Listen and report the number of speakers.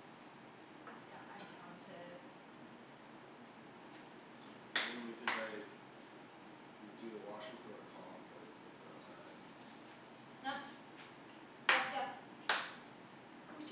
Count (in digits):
2